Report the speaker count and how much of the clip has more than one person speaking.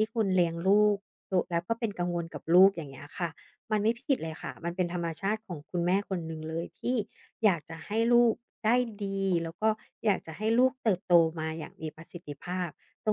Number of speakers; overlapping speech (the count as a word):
one, no overlap